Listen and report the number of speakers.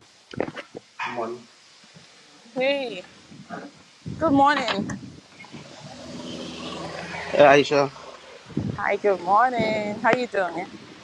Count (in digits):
2